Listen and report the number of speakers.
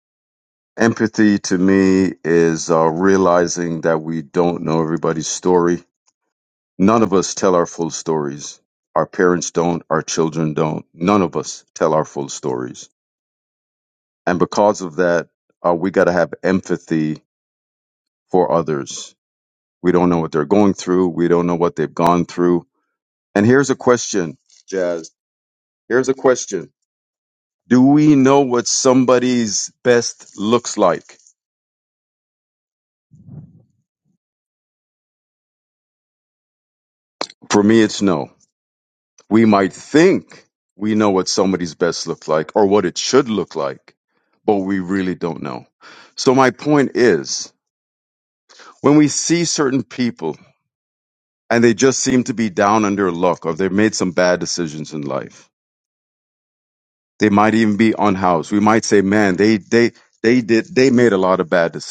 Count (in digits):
1